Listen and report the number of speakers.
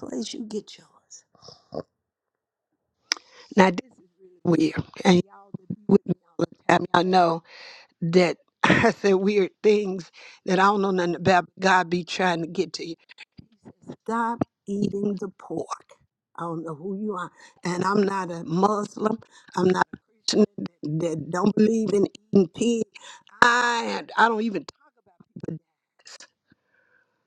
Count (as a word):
one